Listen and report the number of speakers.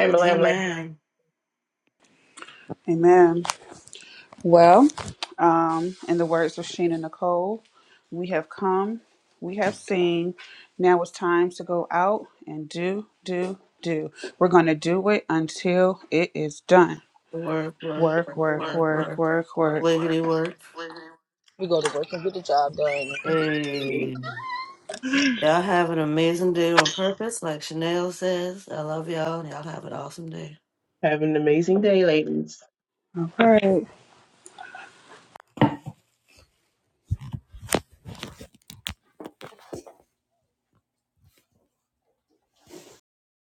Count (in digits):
4